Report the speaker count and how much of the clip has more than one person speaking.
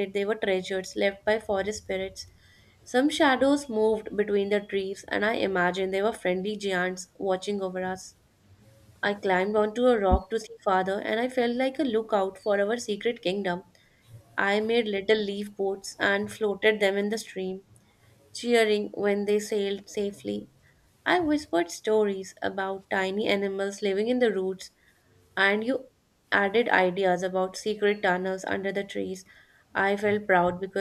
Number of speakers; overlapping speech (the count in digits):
1, no overlap